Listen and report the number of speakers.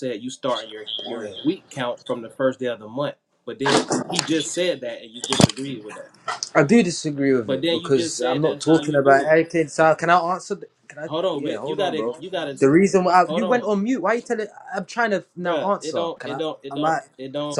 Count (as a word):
two